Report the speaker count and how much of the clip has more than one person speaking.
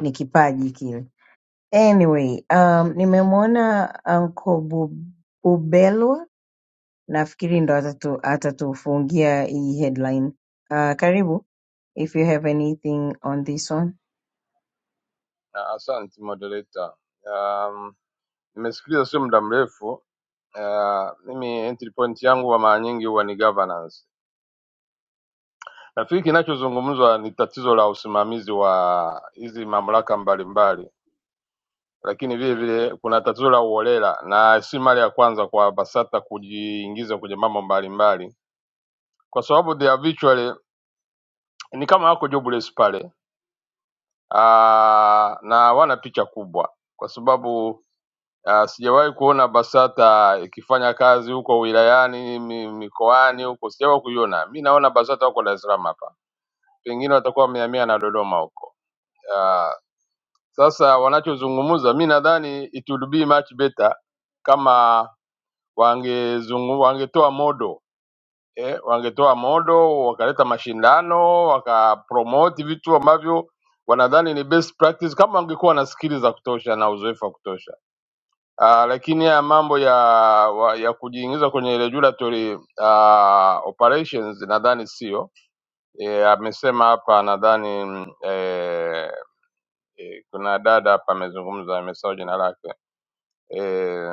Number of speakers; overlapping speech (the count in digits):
2, no overlap